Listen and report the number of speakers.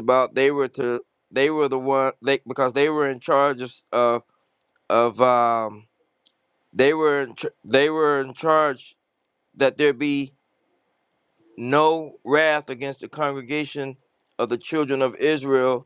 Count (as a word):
one